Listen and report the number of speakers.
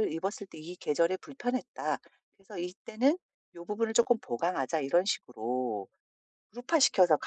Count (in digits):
1